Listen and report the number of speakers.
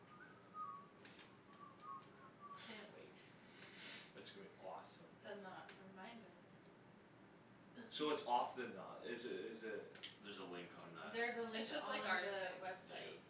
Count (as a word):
four